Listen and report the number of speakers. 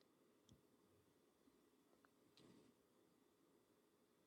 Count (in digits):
0